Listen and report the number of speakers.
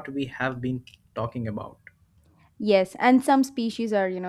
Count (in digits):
2